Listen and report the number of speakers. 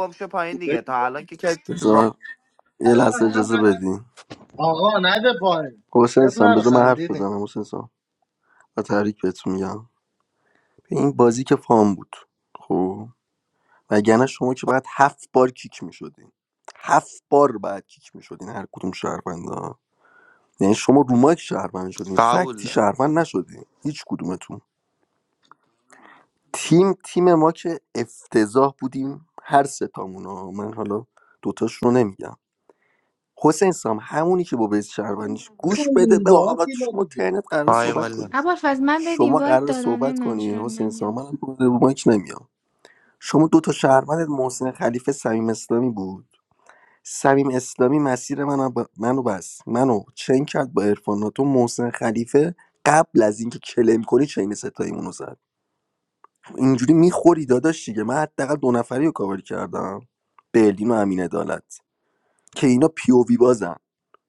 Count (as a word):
four